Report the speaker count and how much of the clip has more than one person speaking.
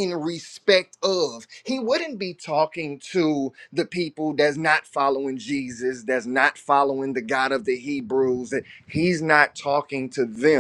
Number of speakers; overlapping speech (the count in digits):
1, no overlap